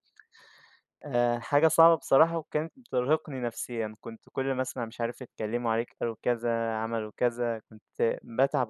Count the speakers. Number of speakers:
one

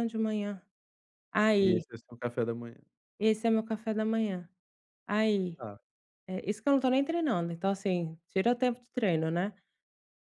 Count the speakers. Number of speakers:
two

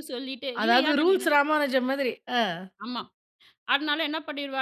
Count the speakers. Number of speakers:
two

